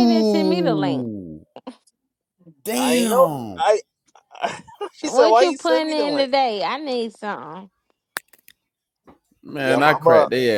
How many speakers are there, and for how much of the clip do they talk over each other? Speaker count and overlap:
three, about 33%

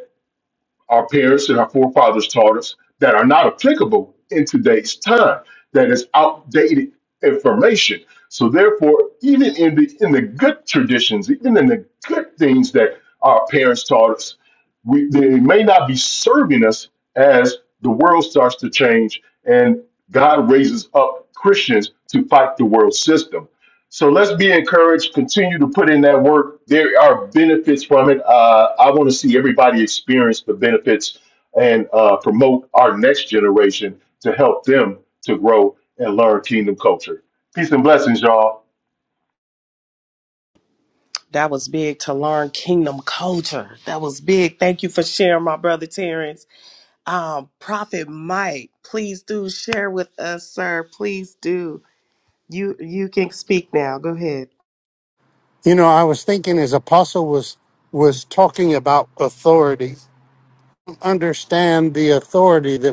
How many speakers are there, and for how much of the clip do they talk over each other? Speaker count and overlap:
three, no overlap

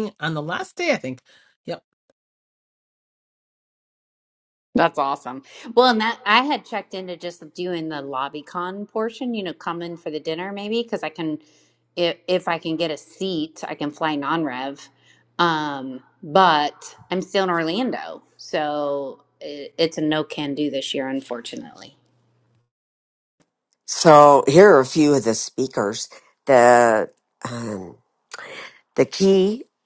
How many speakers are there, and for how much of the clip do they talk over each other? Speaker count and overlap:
three, no overlap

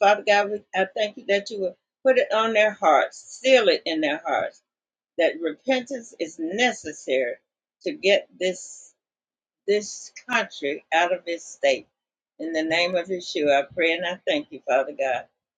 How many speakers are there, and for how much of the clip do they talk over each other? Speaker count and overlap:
one, no overlap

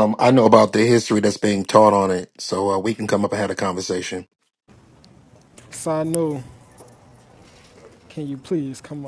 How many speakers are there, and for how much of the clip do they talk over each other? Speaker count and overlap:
two, no overlap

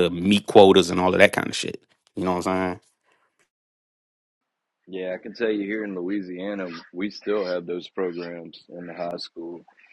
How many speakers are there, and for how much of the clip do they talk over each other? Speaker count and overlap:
two, no overlap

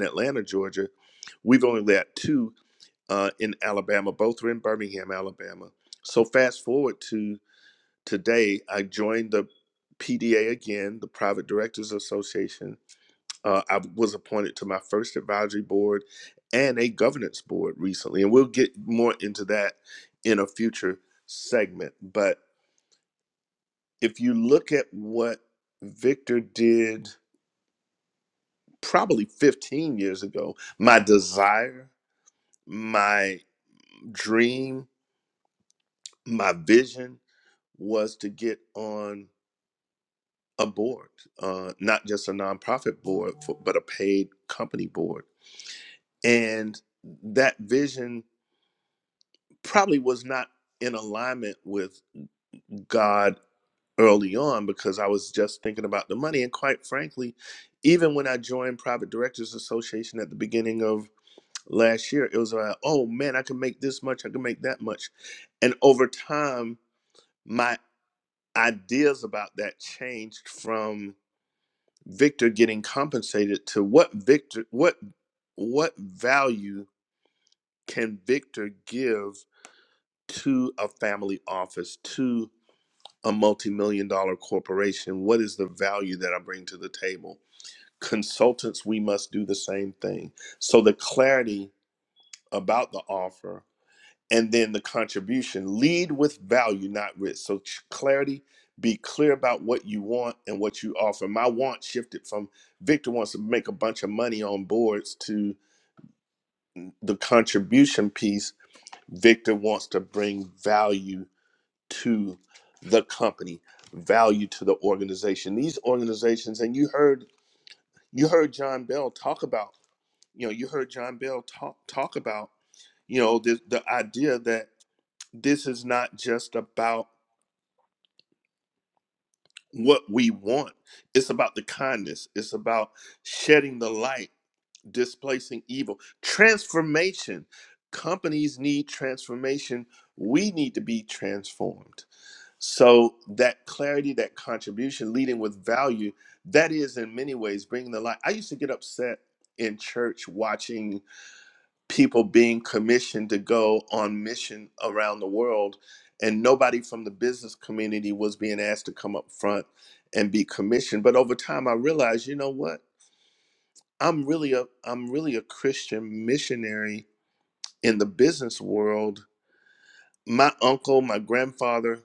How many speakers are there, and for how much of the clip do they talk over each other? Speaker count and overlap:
one, no overlap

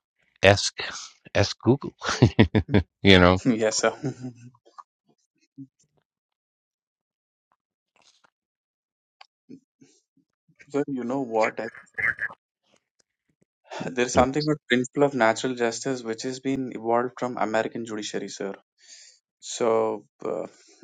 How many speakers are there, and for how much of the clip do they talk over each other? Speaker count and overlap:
two, no overlap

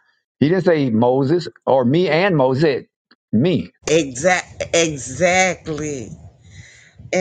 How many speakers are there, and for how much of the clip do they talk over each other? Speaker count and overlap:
two, no overlap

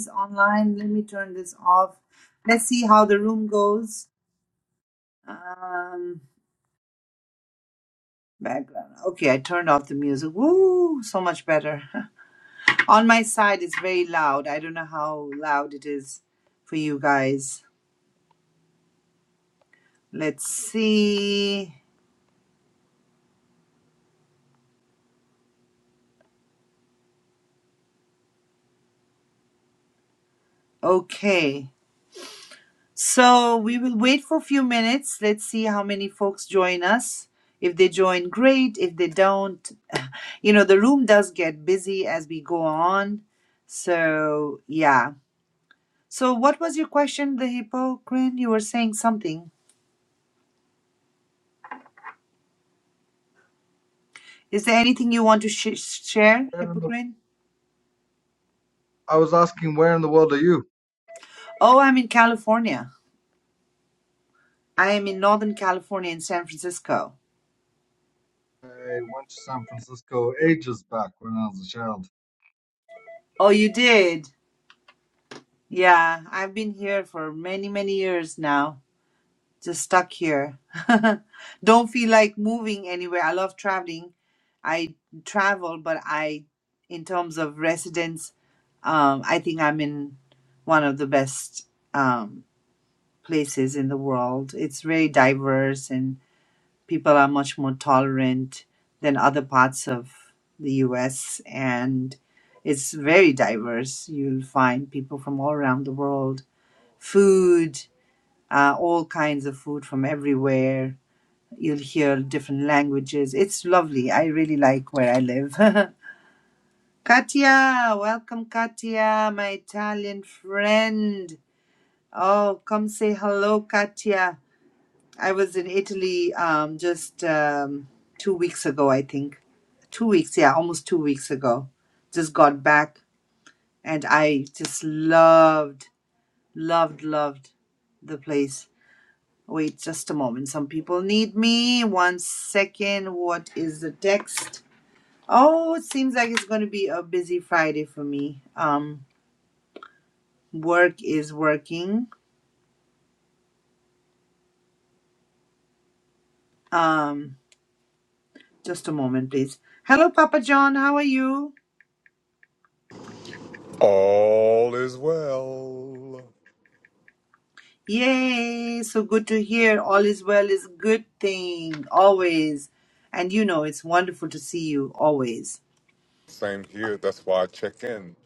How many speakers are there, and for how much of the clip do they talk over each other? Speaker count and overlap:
three, under 1%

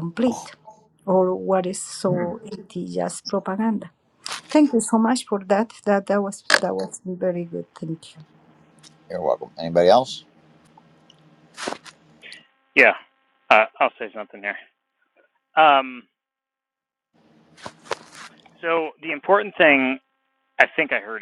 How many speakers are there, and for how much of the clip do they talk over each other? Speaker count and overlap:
three, about 1%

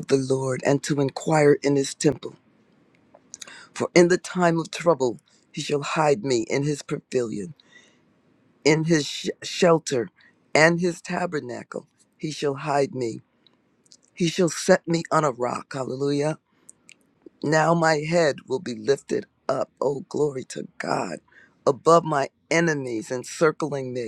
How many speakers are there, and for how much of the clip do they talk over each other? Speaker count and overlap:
one, no overlap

